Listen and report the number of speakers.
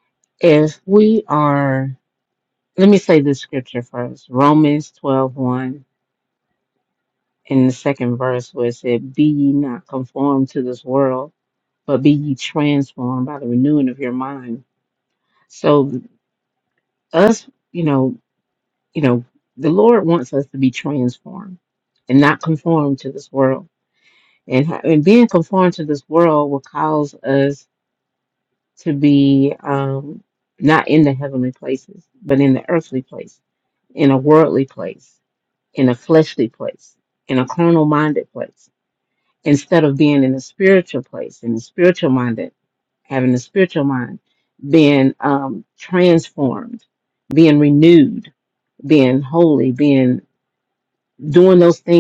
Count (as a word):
one